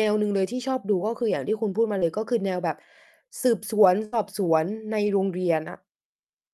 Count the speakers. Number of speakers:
1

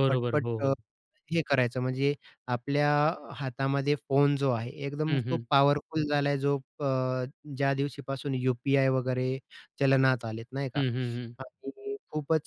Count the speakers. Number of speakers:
2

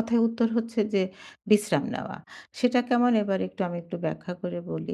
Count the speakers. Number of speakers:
1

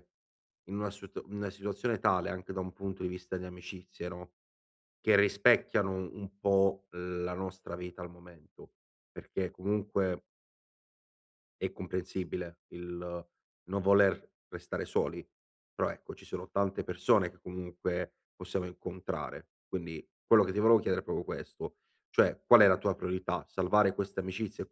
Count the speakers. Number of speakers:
1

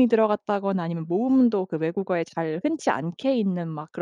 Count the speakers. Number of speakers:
1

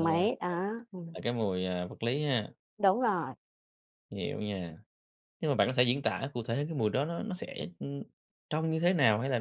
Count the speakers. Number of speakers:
2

